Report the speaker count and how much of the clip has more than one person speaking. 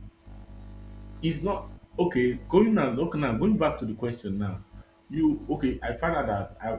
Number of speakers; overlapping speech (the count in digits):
1, no overlap